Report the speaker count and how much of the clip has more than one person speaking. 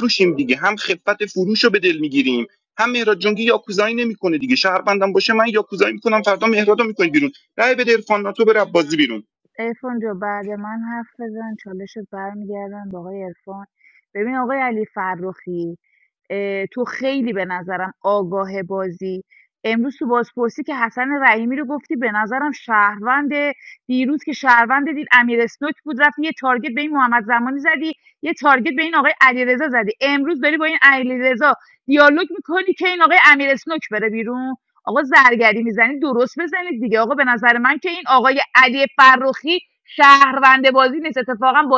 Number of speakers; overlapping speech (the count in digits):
2, no overlap